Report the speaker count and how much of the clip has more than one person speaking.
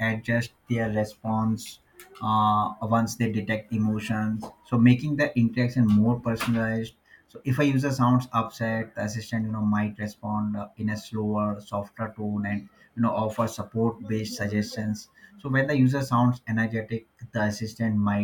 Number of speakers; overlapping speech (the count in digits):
1, no overlap